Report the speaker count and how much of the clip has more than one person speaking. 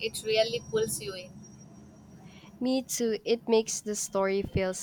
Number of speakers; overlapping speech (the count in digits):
2, no overlap